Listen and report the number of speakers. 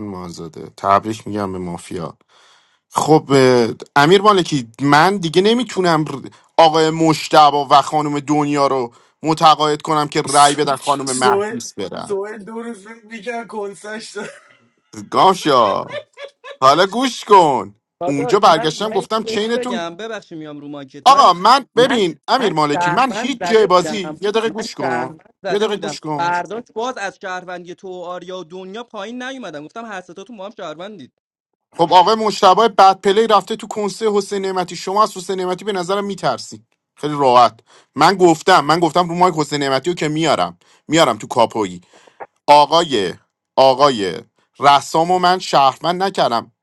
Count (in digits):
3